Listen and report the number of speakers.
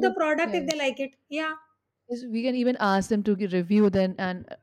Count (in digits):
2